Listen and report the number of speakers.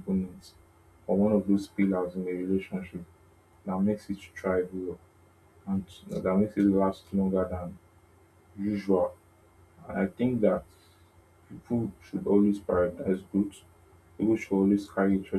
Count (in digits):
1